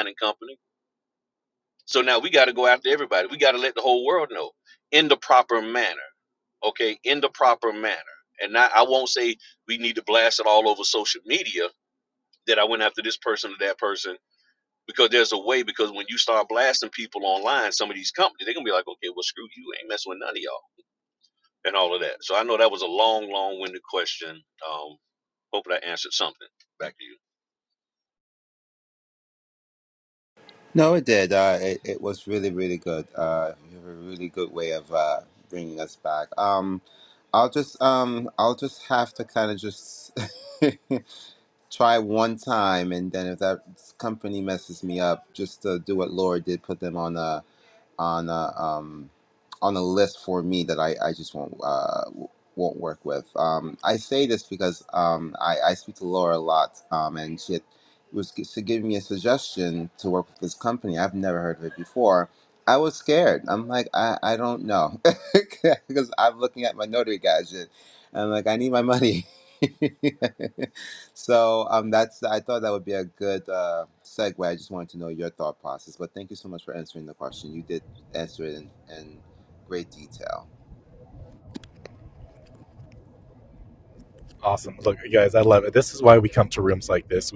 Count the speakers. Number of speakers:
three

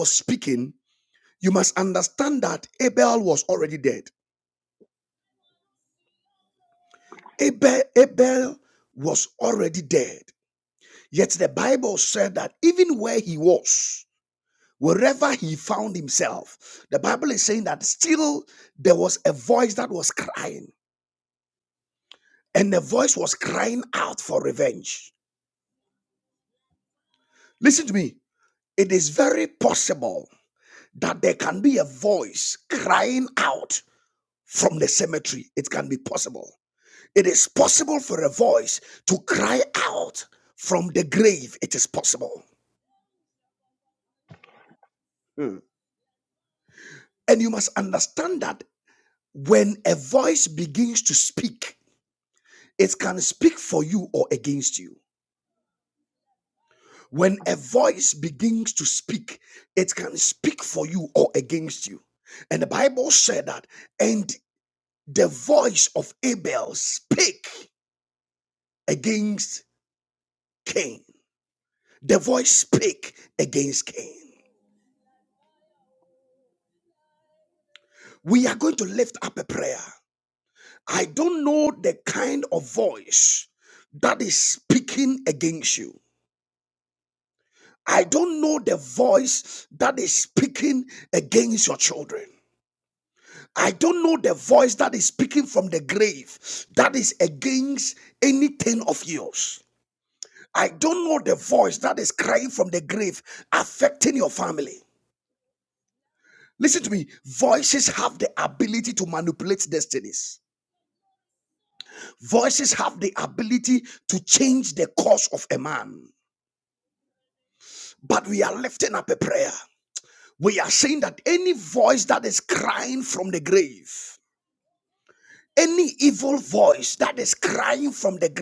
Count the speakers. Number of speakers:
one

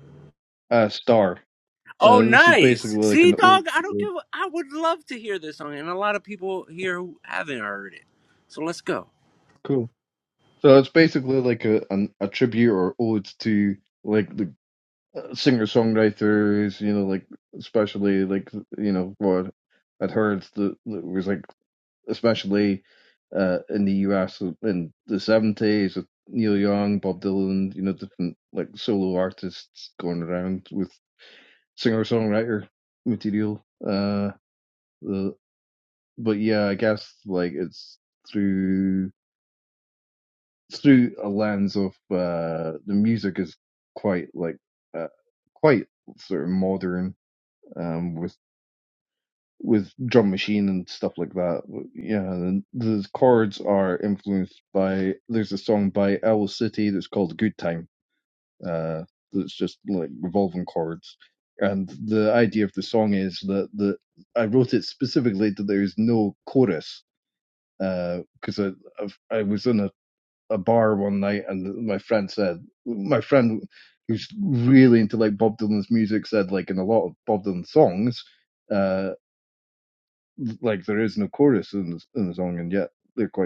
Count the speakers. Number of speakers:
two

